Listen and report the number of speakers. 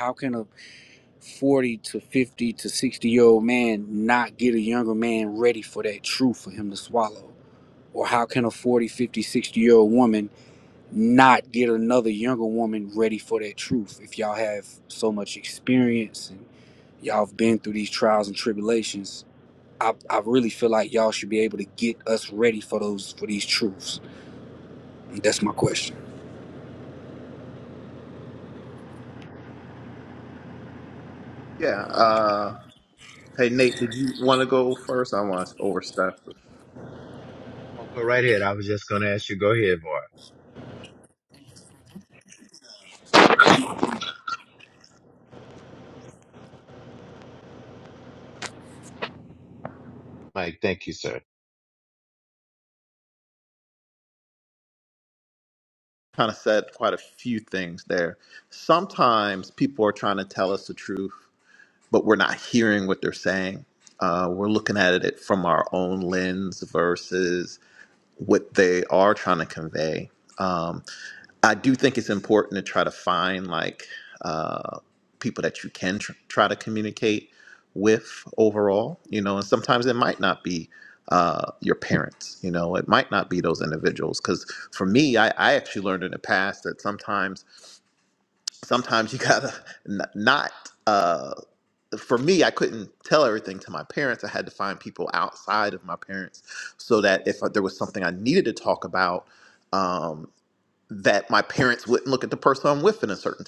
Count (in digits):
3